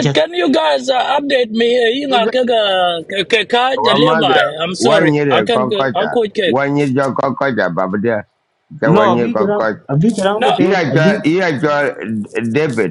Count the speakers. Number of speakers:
3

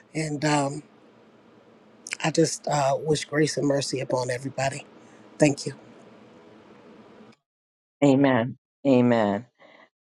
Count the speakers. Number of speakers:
2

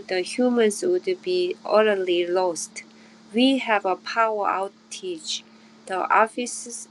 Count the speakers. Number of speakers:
1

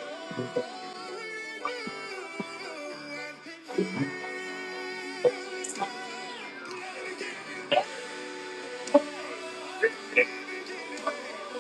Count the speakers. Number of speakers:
0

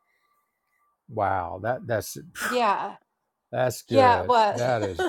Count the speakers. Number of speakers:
2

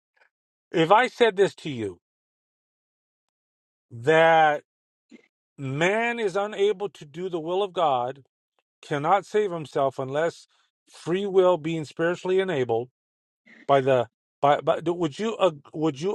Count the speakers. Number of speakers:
1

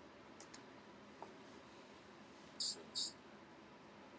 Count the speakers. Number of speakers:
0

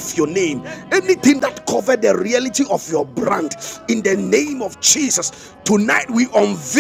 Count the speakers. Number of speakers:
1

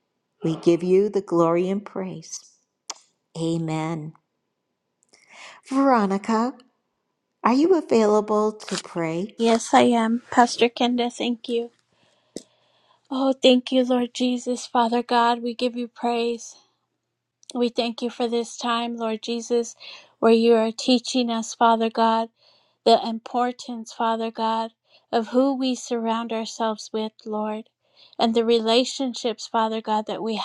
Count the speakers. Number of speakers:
2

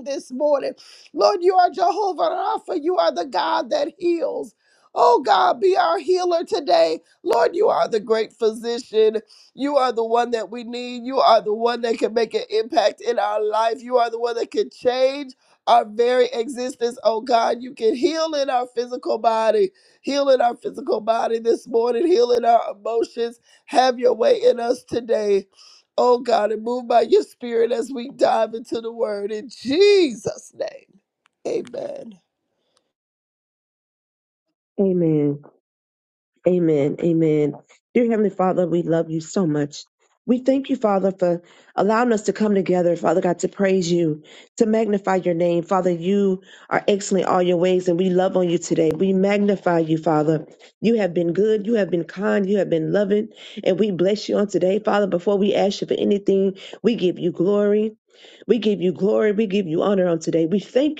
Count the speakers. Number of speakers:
2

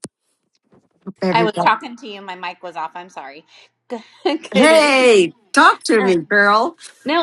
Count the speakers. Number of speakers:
2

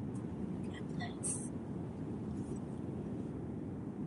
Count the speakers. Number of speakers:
0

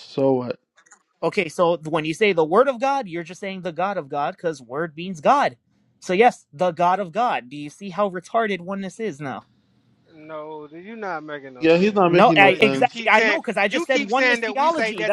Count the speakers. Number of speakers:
3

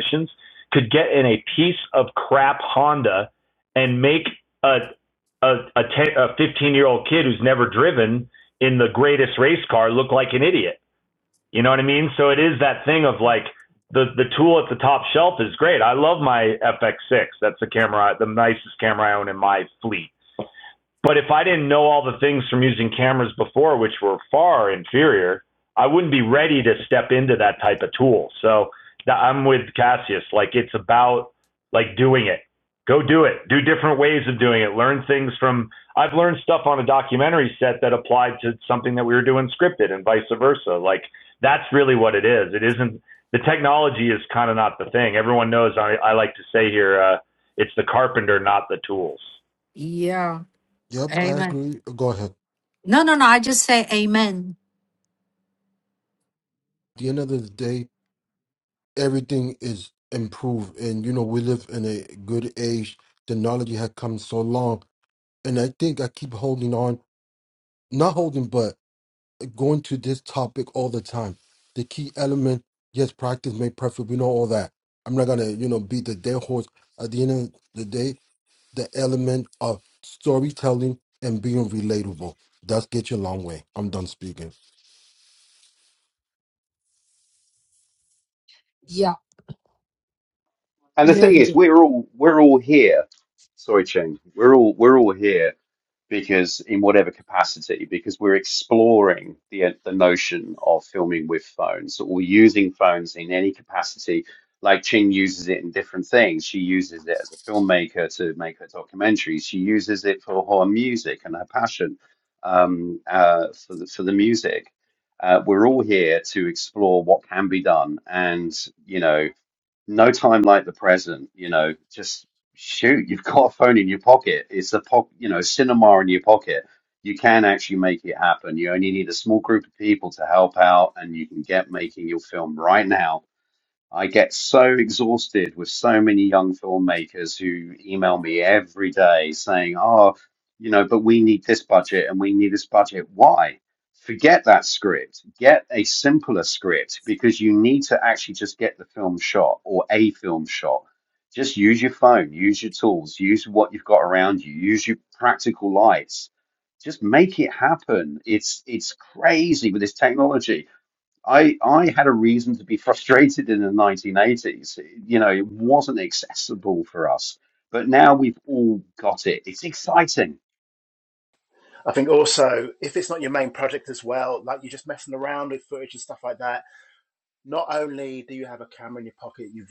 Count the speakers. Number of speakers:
5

